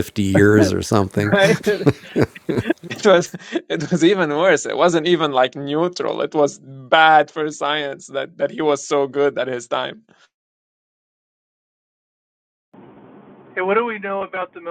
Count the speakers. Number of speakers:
3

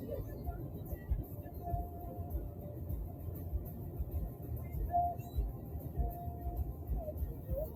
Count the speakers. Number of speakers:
0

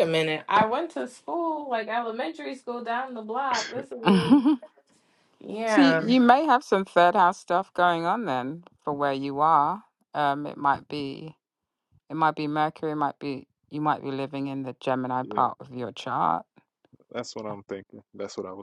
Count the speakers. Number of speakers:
3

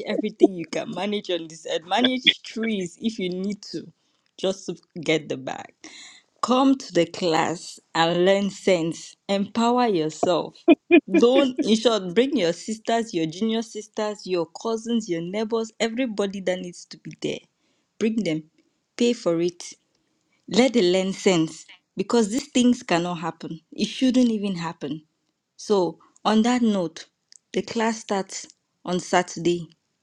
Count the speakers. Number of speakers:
1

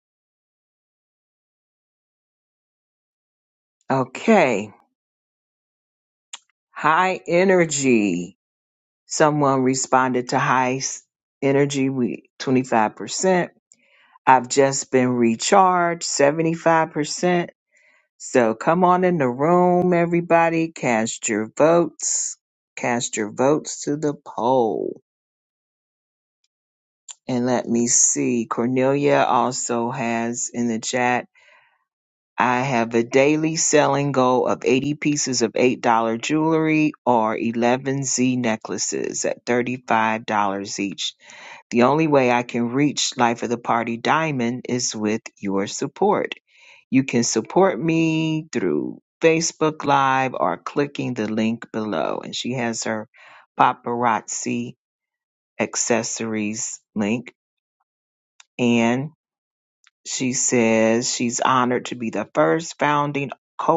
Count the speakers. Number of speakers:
1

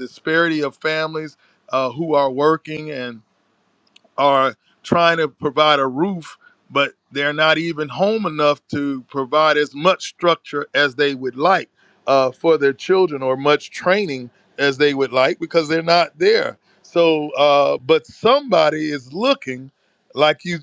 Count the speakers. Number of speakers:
1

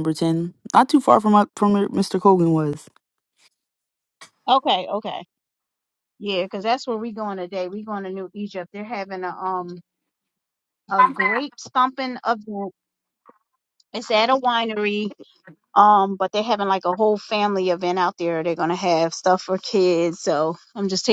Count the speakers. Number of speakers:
2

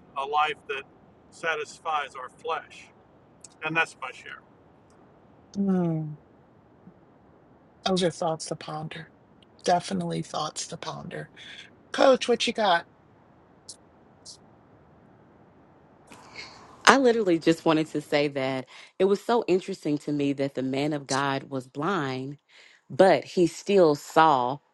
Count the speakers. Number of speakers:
3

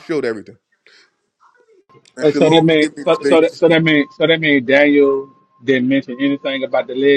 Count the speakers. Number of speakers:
2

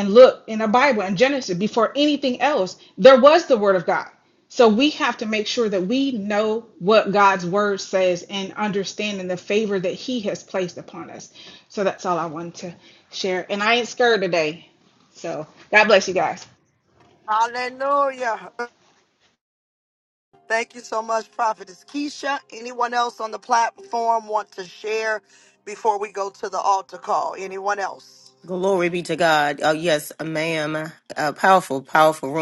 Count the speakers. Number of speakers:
3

